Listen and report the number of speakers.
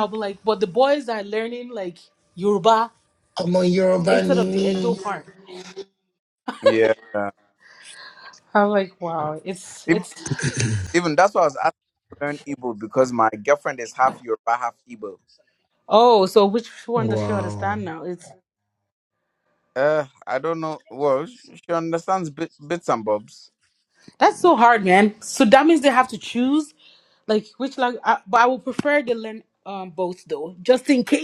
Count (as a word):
three